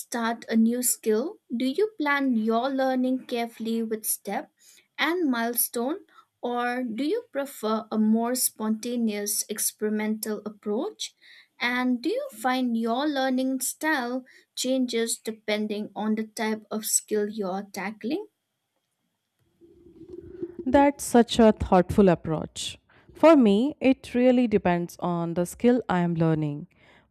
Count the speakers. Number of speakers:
2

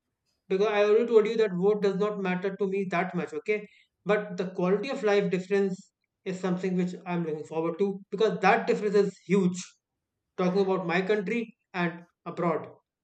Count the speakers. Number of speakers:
1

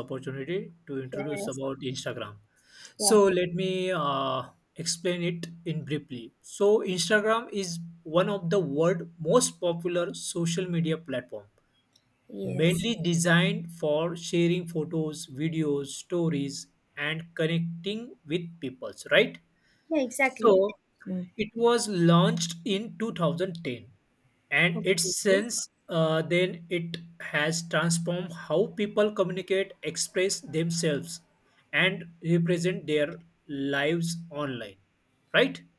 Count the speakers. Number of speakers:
2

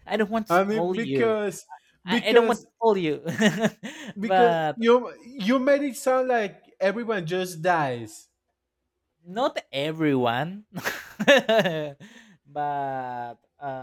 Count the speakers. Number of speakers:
2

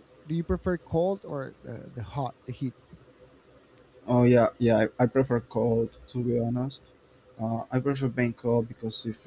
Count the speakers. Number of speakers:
2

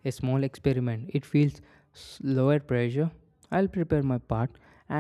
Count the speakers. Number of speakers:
1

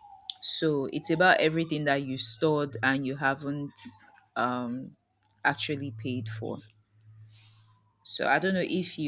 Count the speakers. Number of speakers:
1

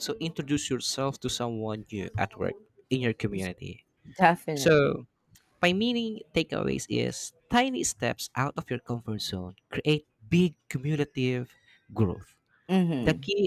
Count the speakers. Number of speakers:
2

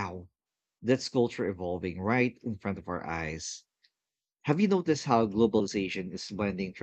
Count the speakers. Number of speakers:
1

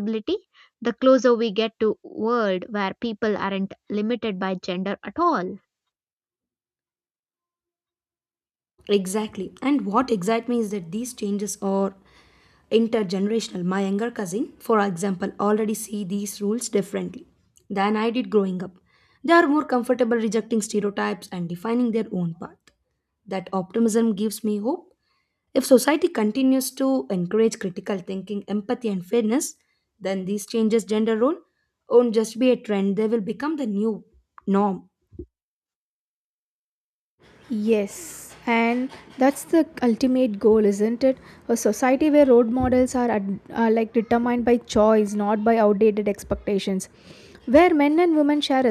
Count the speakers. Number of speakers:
3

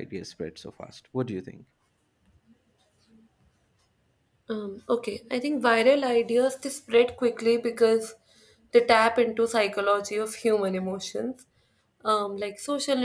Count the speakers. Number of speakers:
2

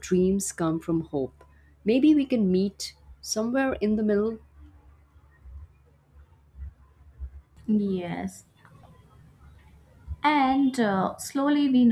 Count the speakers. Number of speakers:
2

